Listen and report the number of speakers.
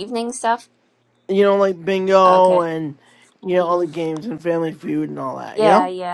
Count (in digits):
2